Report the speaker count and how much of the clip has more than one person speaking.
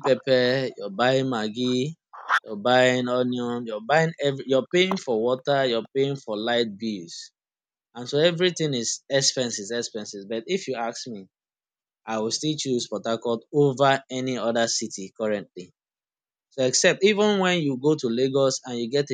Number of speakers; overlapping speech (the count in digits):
1, no overlap